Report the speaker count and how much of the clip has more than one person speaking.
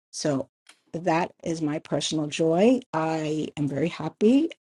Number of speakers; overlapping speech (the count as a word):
one, no overlap